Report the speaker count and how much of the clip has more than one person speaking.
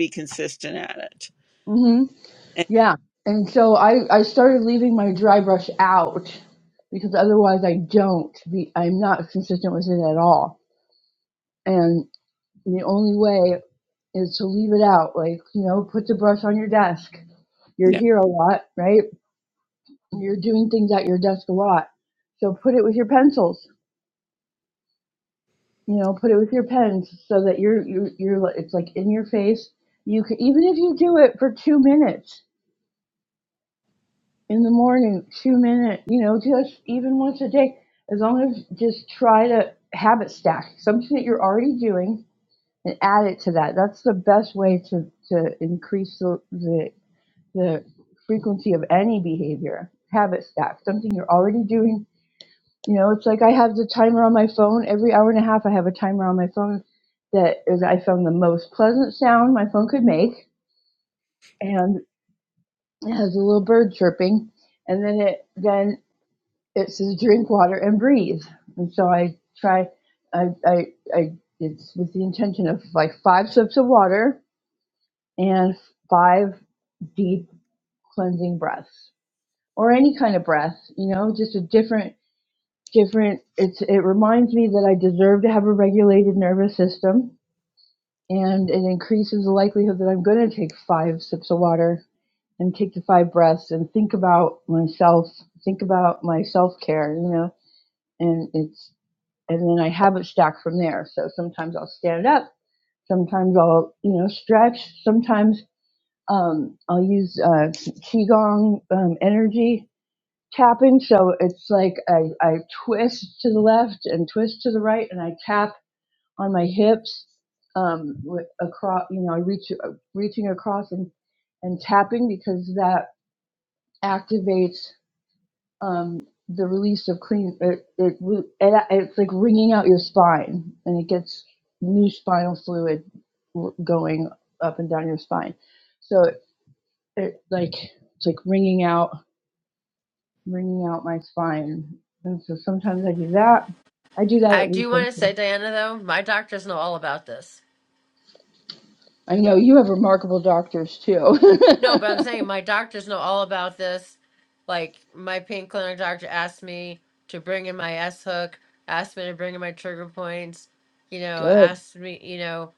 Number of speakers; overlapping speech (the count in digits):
3, about 1%